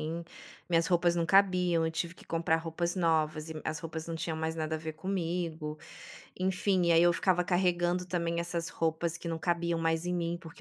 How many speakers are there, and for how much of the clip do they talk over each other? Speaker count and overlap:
1, no overlap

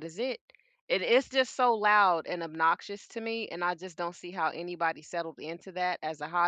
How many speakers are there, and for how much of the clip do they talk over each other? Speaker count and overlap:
1, no overlap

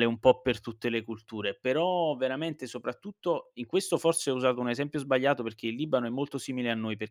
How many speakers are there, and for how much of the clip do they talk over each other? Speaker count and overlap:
1, no overlap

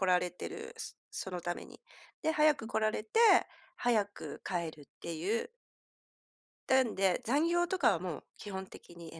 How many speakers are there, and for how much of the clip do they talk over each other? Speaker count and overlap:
1, no overlap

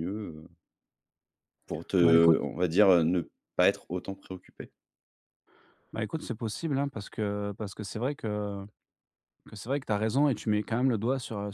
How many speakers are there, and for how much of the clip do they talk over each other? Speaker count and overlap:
2, under 1%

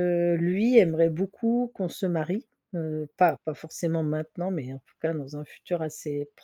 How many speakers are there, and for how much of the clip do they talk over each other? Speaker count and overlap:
1, no overlap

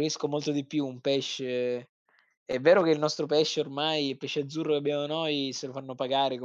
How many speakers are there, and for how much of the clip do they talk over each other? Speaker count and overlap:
1, no overlap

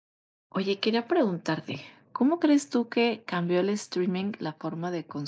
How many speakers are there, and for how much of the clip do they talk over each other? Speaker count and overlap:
1, no overlap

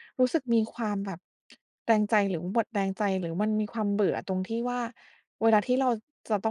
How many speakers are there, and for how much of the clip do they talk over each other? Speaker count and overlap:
1, no overlap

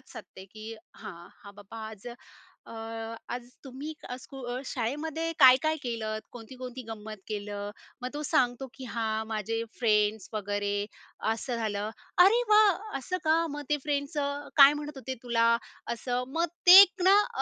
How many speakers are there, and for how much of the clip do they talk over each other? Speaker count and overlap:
1, no overlap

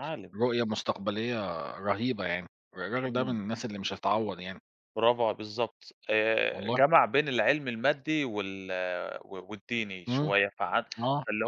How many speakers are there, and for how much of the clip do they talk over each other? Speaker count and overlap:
2, about 9%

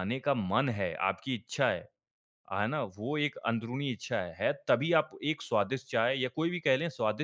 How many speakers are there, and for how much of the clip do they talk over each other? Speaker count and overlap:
1, no overlap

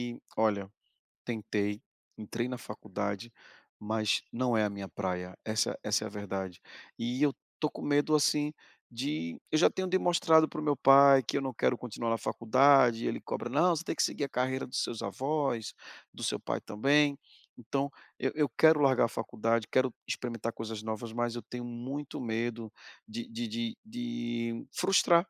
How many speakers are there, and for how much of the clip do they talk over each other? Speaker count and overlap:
1, no overlap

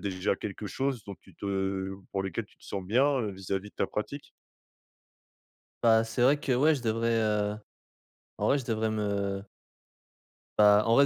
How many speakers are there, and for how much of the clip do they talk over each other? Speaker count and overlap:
2, no overlap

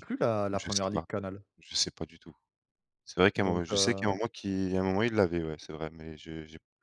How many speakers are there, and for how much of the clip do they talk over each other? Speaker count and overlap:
2, about 19%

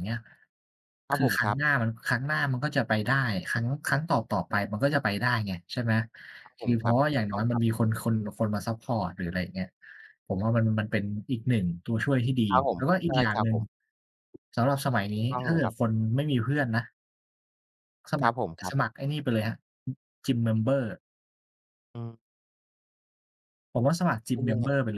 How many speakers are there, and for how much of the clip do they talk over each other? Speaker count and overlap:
2, about 14%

